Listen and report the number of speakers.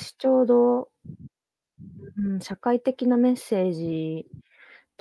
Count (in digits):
1